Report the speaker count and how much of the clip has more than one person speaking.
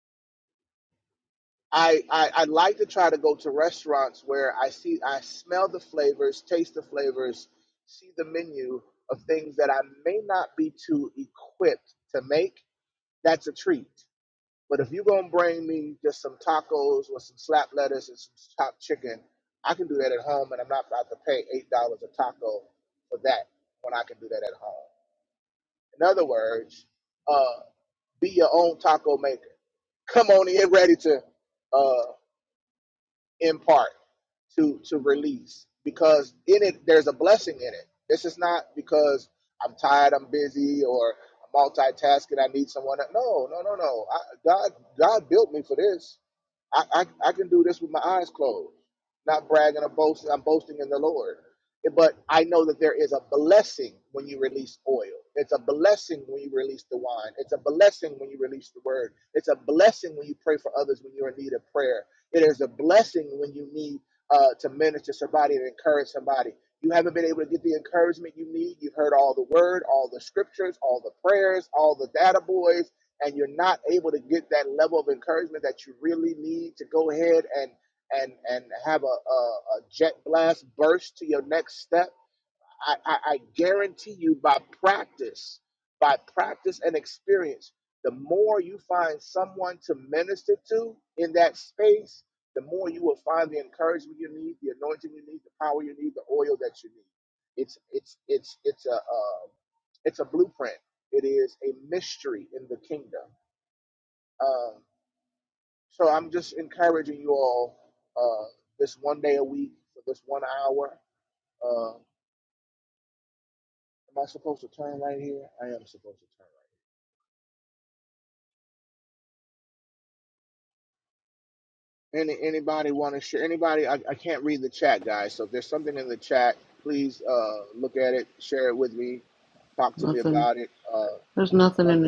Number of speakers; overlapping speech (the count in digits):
2, about 1%